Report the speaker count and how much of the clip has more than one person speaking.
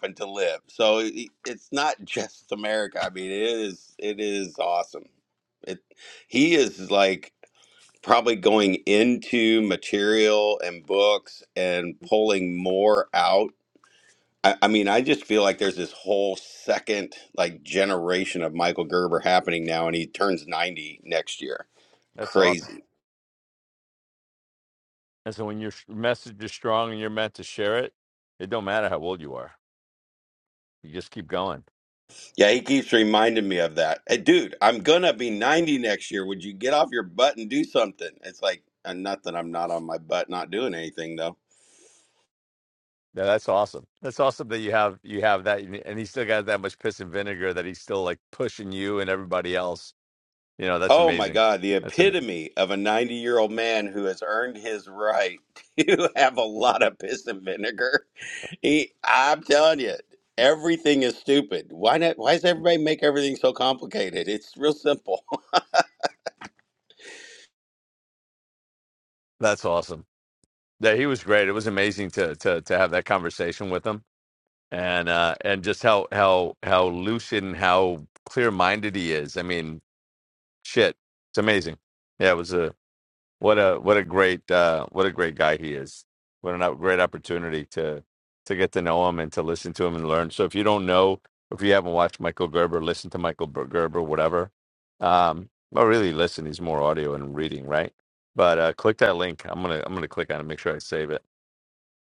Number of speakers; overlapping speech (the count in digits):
2, about 1%